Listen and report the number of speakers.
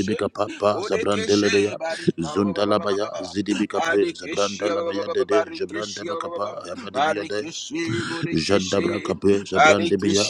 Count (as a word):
two